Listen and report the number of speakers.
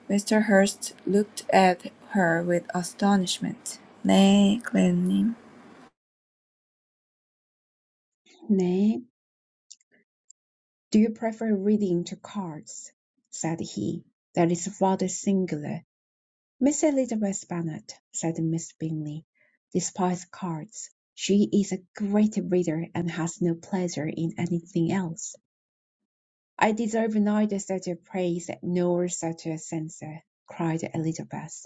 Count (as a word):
two